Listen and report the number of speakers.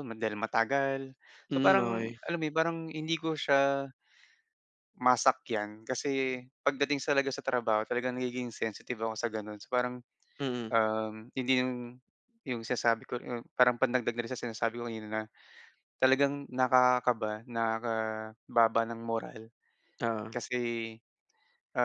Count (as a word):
two